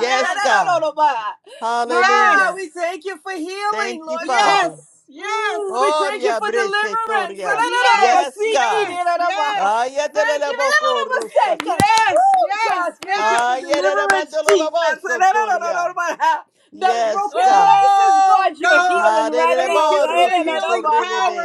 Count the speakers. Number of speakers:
three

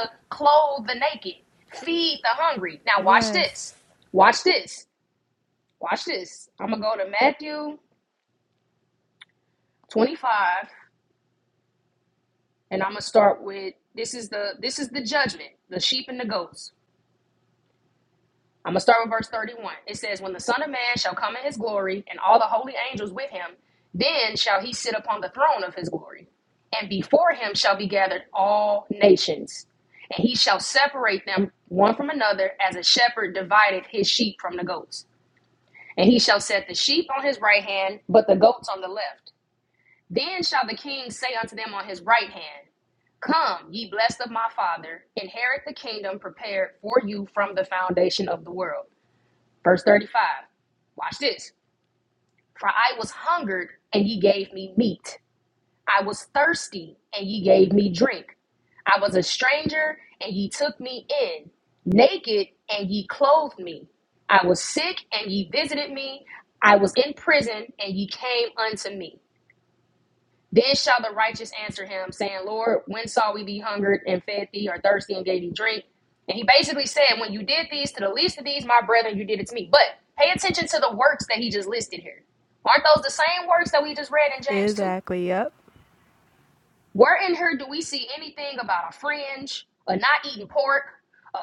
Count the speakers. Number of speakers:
two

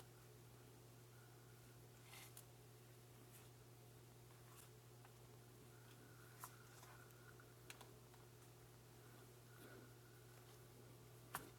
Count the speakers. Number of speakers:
zero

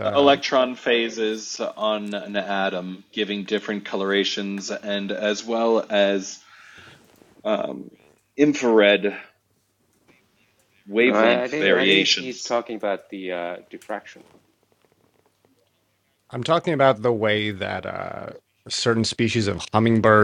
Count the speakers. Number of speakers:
three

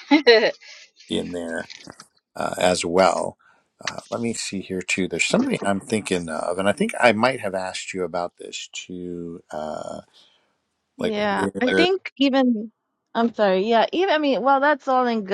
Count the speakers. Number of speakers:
two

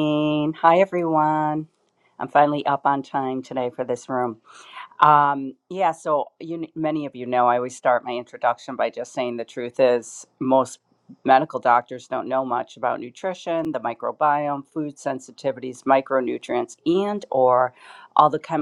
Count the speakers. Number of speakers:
one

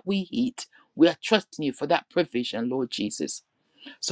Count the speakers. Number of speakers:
one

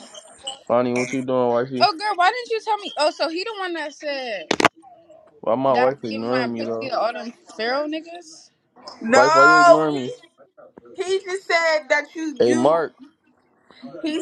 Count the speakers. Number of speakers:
three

